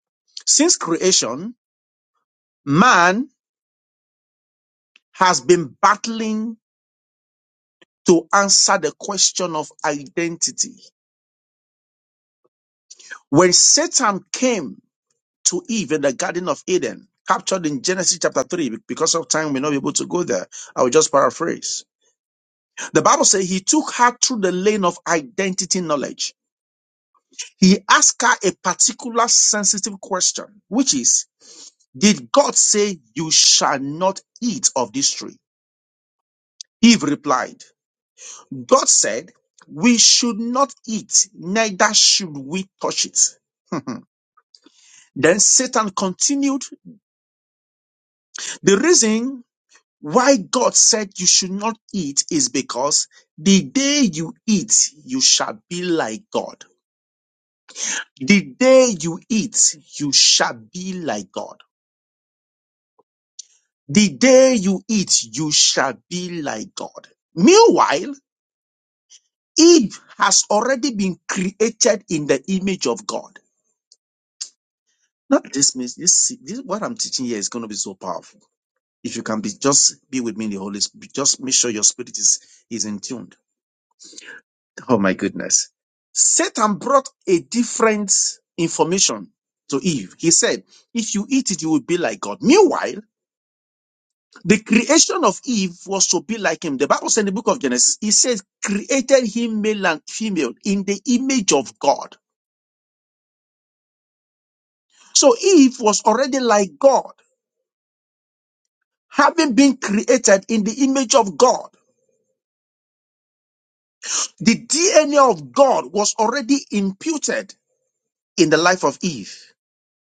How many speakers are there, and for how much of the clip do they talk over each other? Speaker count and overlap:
1, no overlap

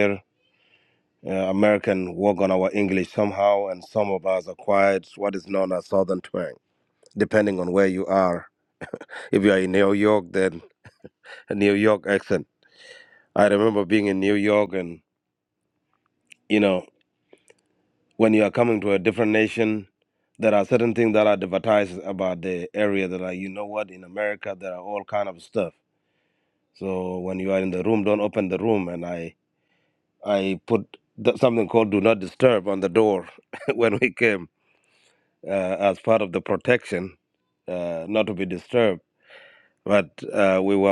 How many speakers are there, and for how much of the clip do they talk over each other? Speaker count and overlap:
1, no overlap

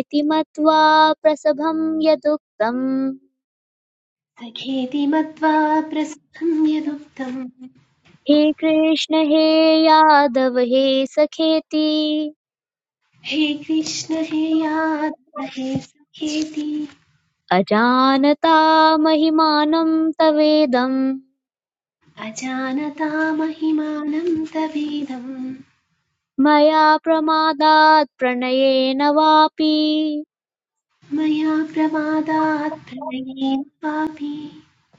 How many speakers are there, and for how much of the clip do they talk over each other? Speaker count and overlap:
2, no overlap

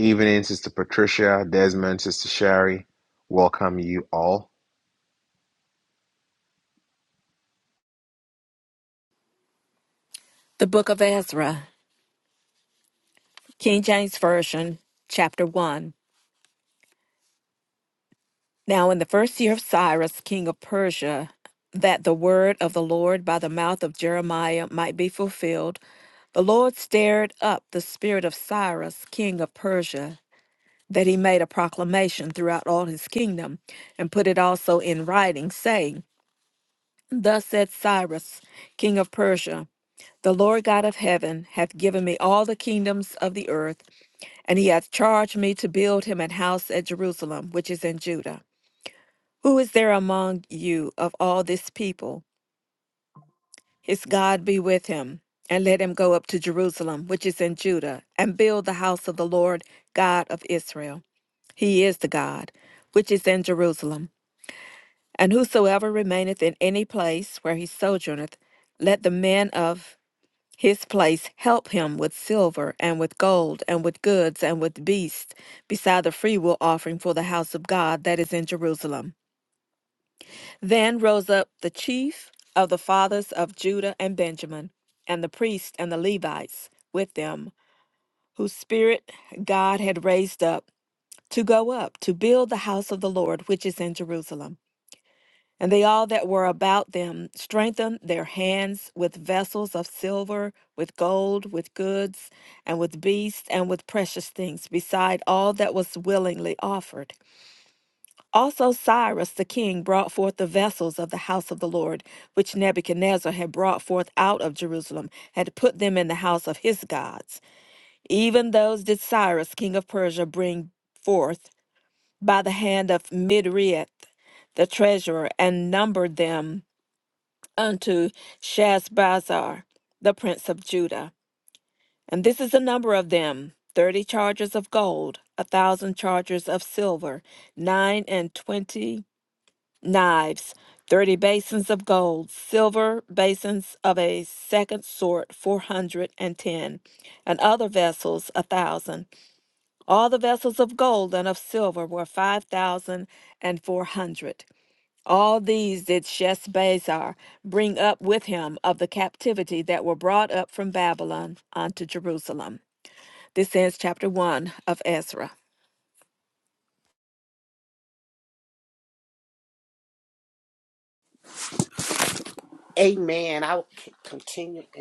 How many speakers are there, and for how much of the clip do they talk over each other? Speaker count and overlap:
3, no overlap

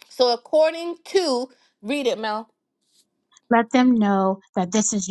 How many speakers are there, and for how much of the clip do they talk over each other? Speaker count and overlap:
2, no overlap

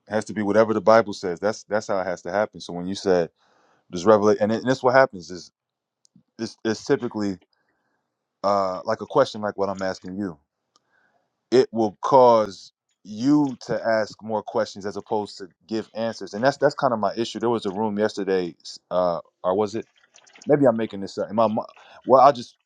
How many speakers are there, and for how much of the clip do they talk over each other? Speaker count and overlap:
1, no overlap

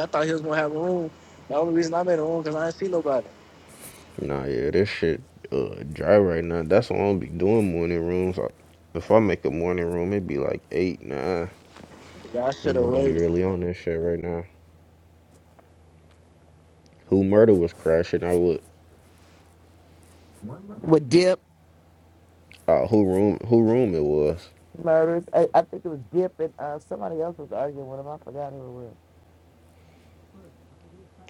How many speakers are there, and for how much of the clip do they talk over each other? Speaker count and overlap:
3, about 2%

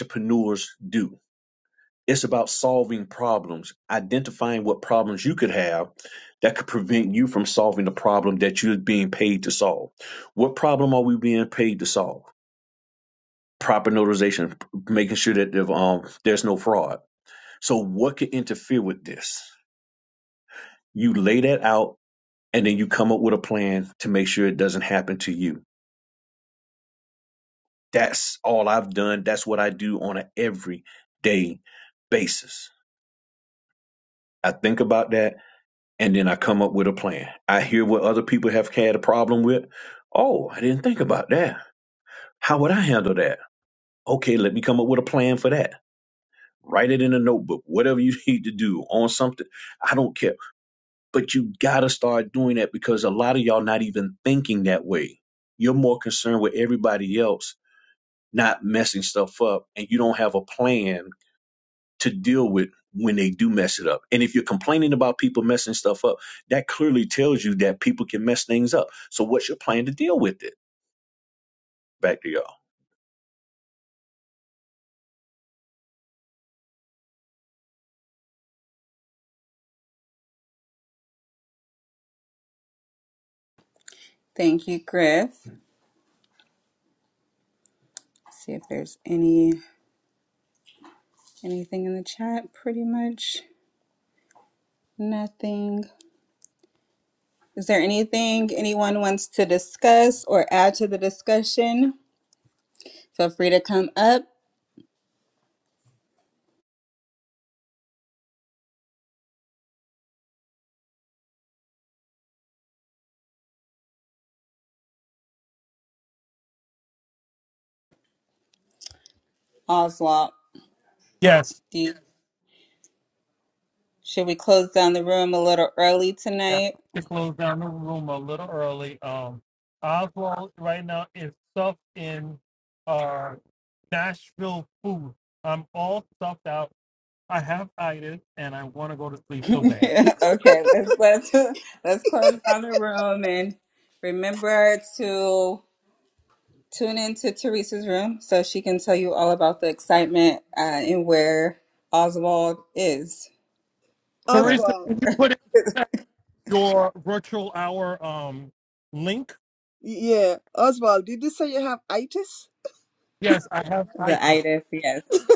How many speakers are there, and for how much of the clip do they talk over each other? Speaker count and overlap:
4, about 1%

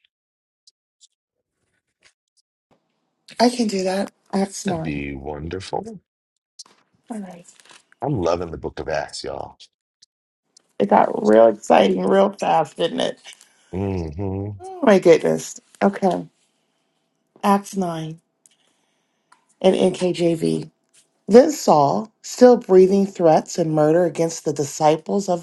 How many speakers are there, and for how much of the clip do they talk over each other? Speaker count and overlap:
2, no overlap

